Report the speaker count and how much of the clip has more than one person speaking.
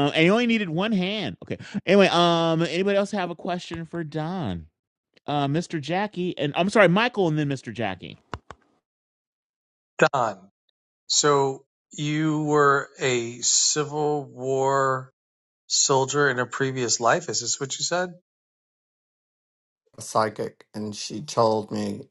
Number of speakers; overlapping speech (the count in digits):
3, no overlap